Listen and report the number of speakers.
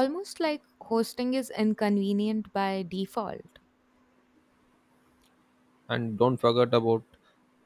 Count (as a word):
two